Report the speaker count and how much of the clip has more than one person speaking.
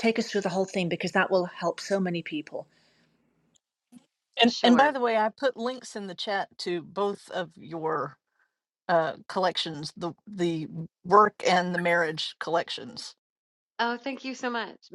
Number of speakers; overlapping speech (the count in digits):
3, about 3%